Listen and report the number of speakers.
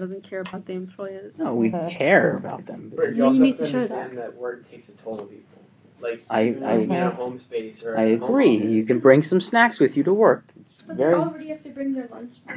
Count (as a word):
four